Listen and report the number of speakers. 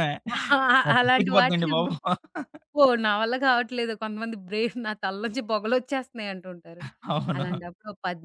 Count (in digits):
2